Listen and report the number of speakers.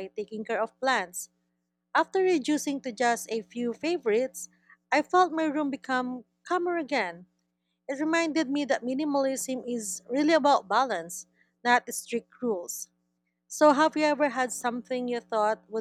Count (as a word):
one